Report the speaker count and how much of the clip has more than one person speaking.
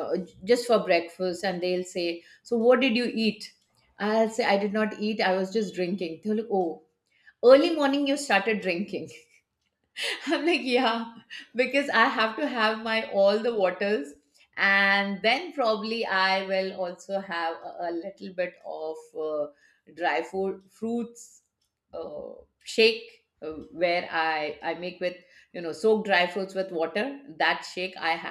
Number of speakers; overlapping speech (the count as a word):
one, no overlap